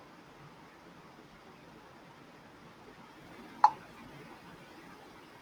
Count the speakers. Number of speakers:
zero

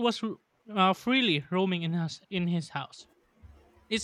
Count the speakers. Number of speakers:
one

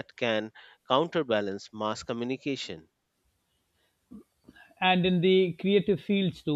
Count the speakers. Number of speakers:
two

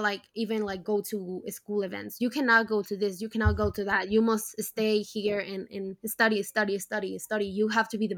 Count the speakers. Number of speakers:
one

